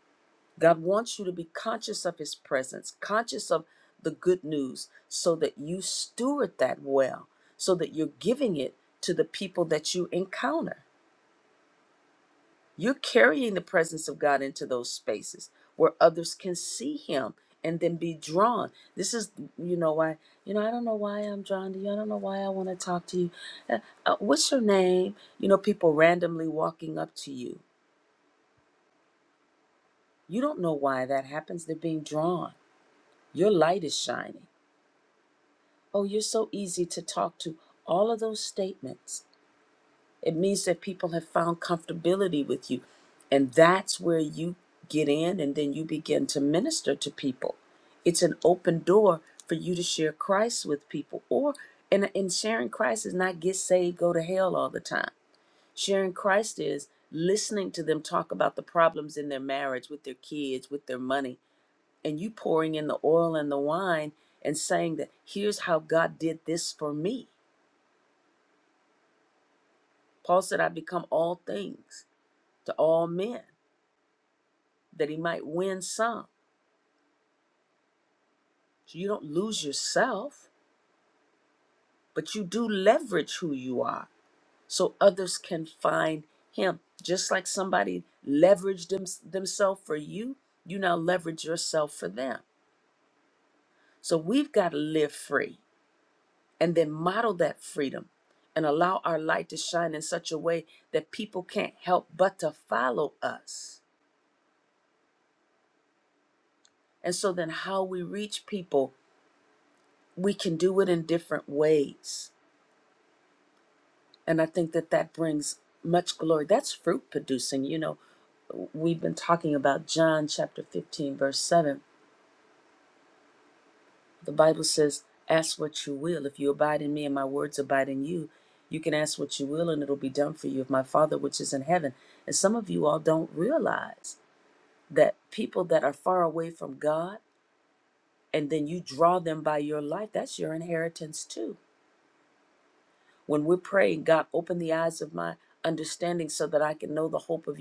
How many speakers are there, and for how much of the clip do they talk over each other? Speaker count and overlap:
one, no overlap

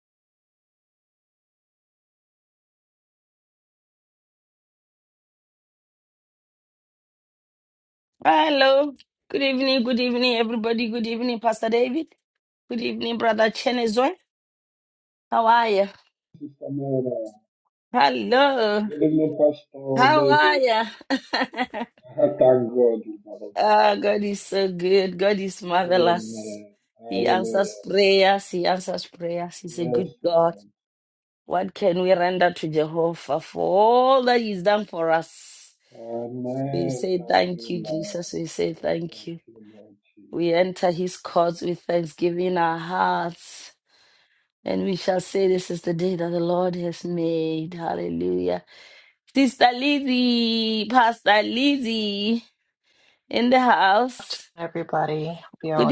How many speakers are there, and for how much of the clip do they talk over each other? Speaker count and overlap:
three, about 10%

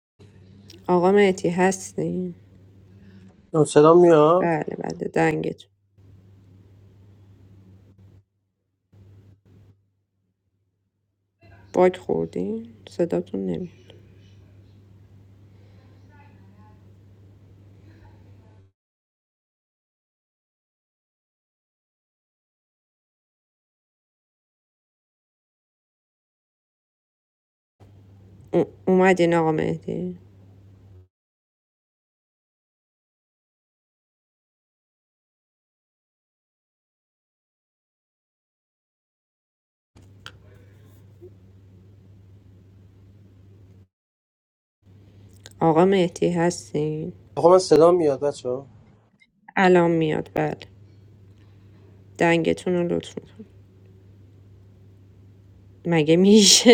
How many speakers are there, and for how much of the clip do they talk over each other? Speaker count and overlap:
two, under 1%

